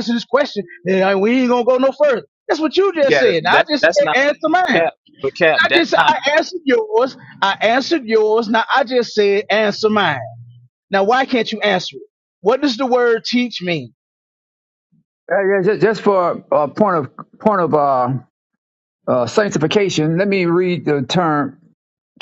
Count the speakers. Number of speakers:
3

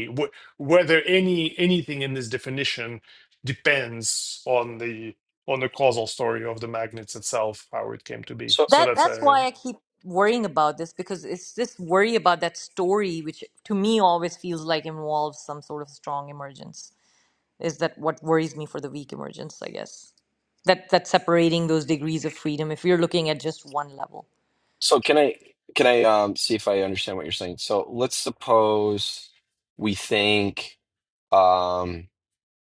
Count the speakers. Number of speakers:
3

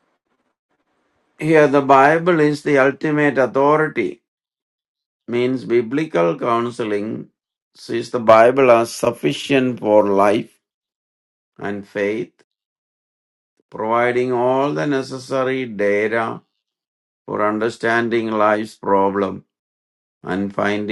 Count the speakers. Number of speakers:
1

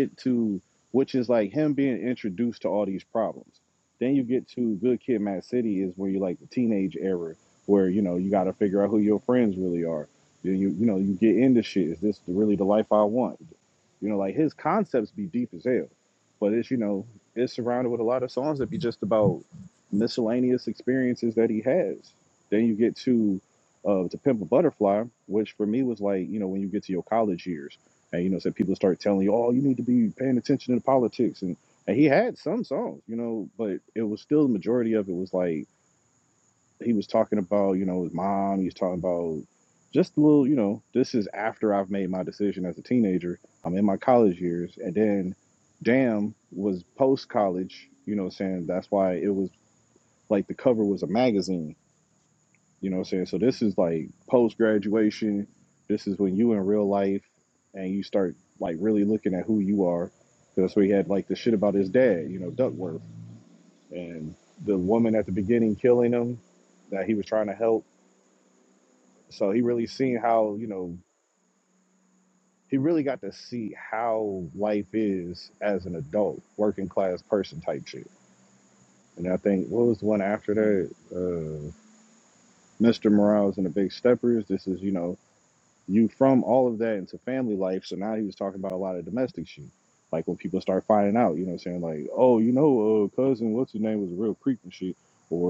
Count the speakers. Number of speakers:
1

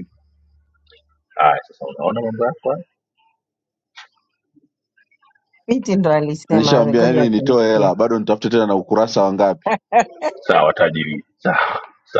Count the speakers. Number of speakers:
3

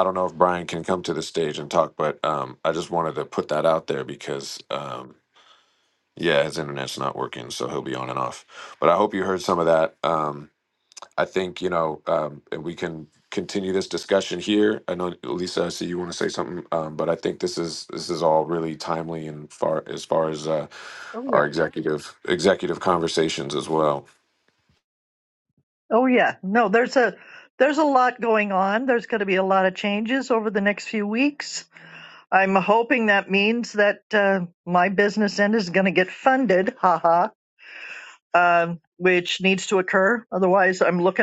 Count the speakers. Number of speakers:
2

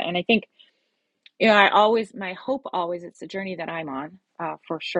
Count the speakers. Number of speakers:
1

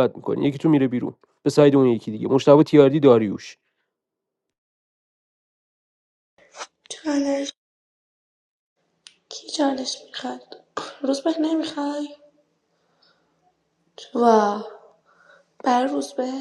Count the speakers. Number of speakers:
2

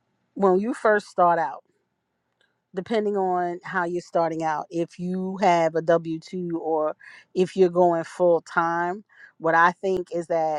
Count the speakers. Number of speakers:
1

